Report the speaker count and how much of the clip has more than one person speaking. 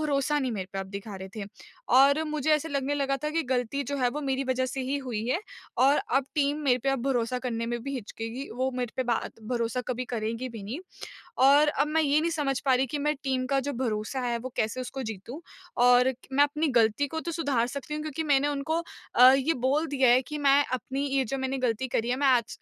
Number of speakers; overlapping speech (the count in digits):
1, no overlap